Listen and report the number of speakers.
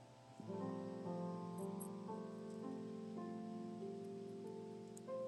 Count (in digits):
0